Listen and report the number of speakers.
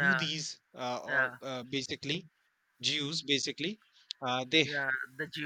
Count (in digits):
2